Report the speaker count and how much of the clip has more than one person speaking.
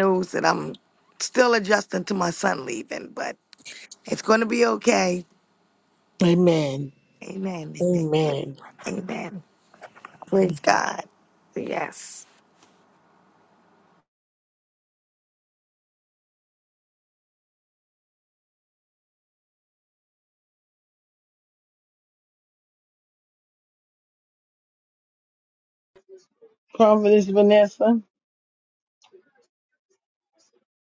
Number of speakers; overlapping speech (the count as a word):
three, about 2%